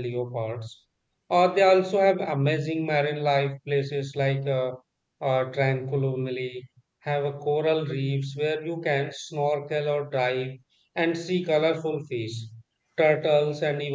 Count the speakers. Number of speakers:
one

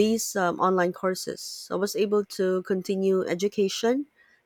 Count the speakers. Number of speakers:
one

